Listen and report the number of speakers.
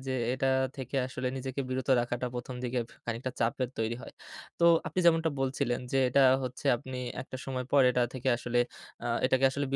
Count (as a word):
one